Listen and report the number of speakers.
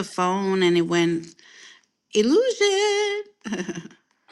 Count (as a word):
one